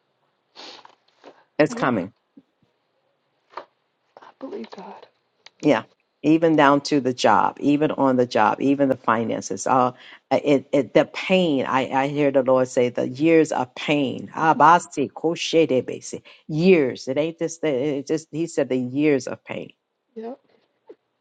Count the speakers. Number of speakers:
2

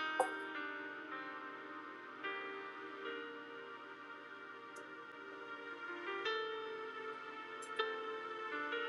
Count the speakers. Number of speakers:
0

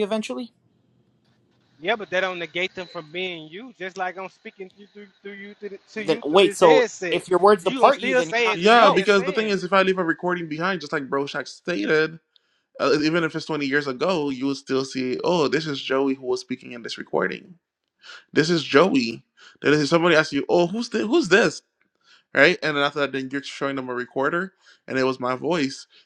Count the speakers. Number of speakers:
3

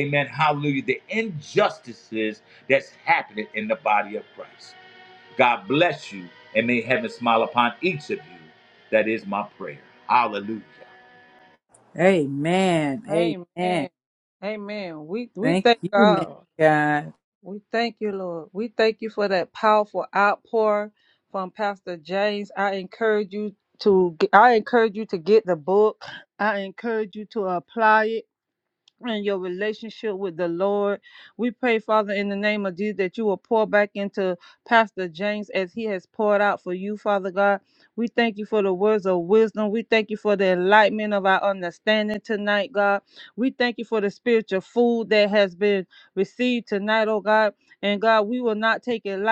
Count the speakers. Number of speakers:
3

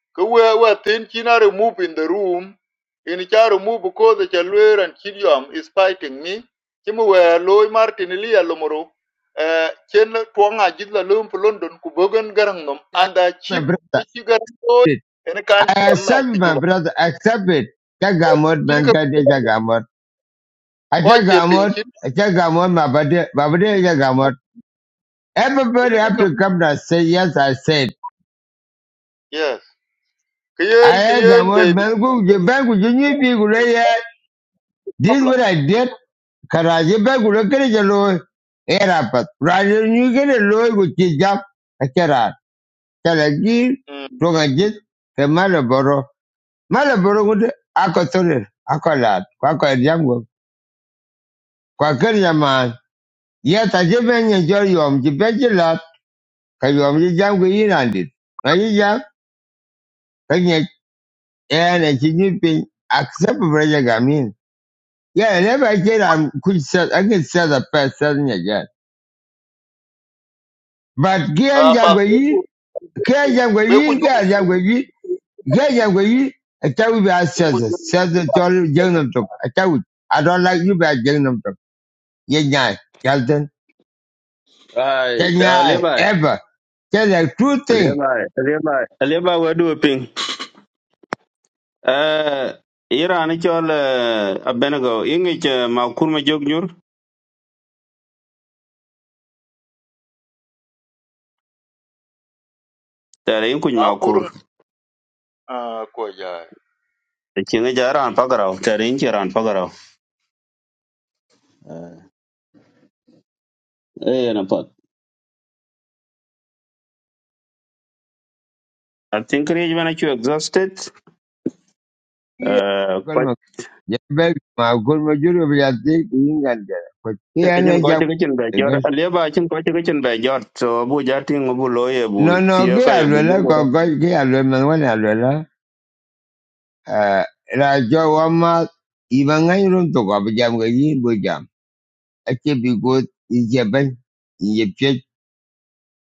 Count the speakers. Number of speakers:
3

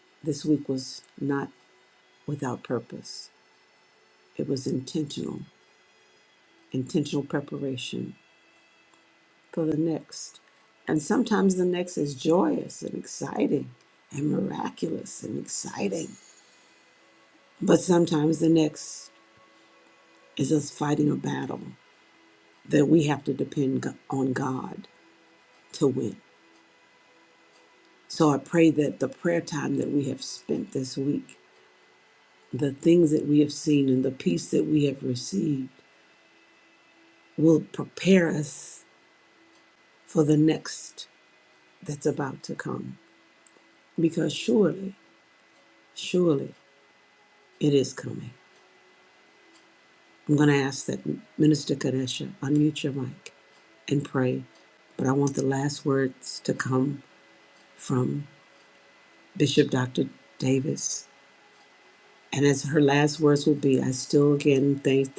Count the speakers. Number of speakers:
1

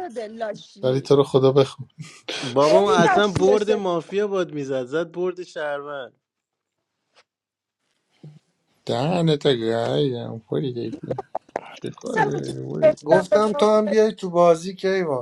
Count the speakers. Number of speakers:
4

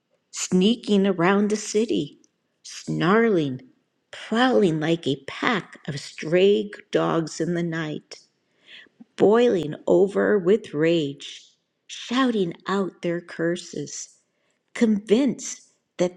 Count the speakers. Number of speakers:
1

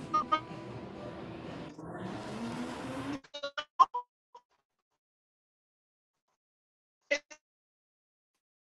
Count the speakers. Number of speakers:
0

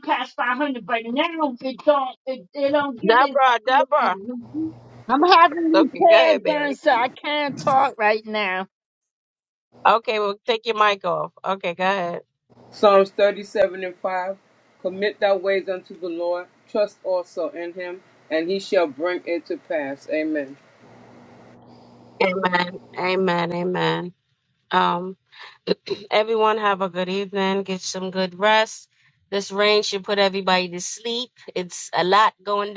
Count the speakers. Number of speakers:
3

